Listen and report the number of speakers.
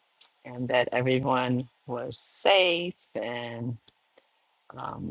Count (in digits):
1